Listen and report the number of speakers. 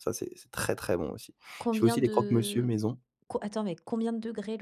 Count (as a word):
two